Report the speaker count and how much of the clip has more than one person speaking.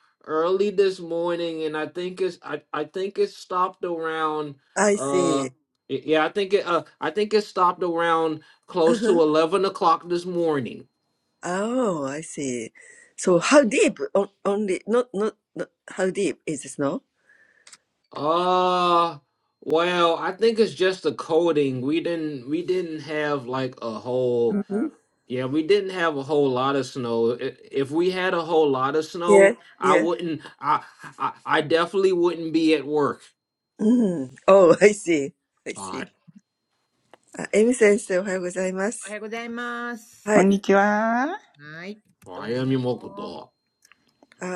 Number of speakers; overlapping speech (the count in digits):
4, about 7%